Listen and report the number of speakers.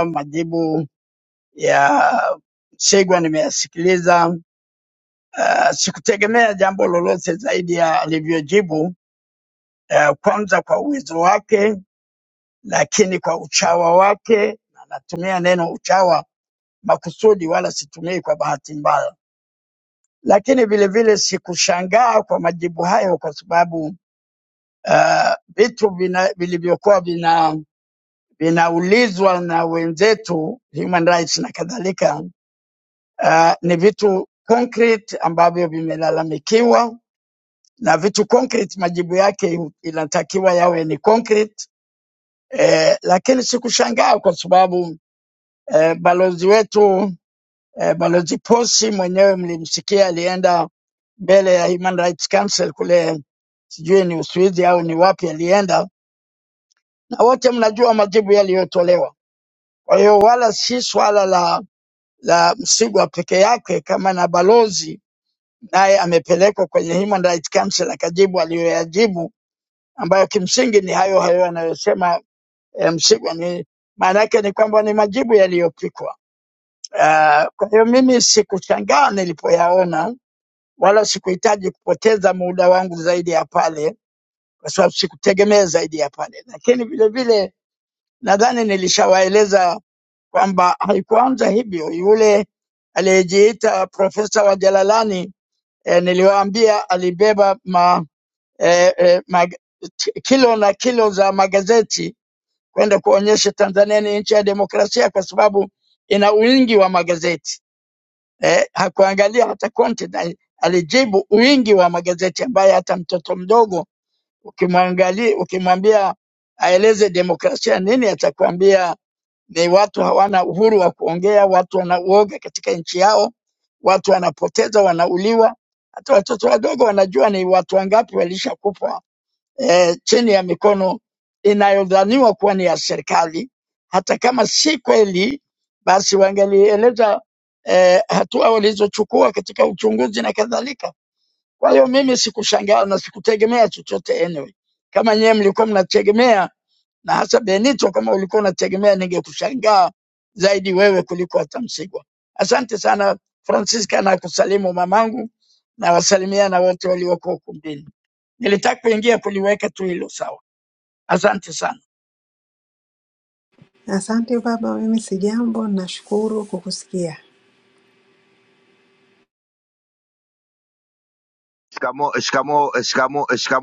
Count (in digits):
3